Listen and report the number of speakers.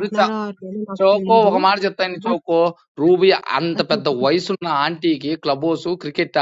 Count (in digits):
2